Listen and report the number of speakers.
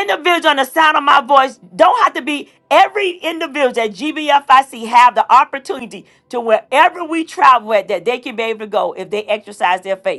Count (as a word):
one